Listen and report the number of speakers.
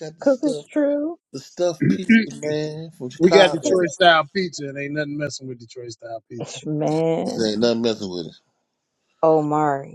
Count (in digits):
3